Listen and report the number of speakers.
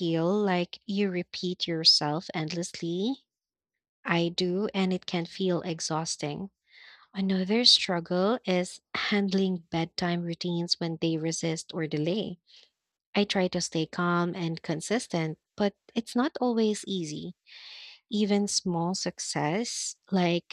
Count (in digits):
1